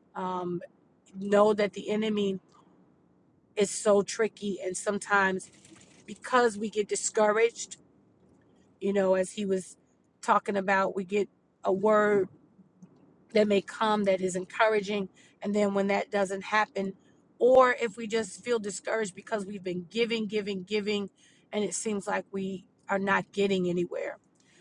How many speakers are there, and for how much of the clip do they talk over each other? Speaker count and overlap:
1, no overlap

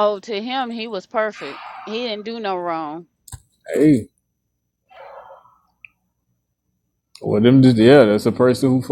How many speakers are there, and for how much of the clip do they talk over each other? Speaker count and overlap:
2, no overlap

